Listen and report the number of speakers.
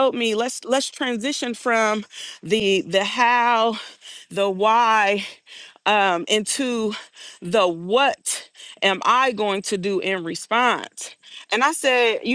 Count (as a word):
one